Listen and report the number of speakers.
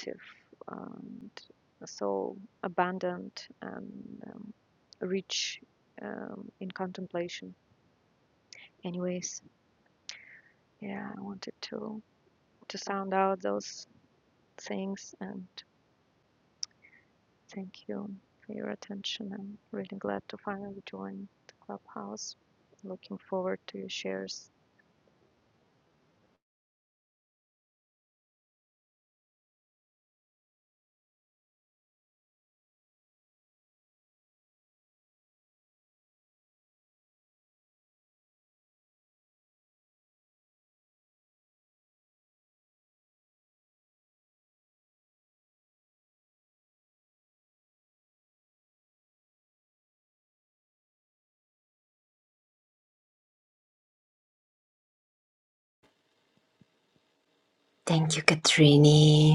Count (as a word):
two